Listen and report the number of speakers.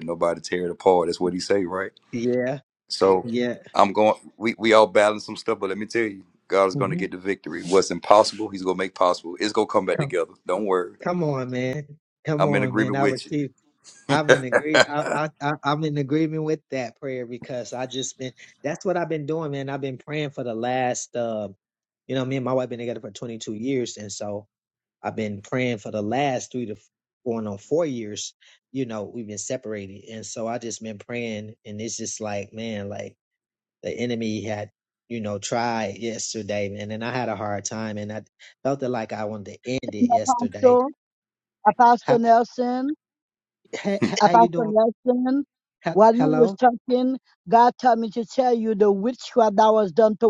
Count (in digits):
3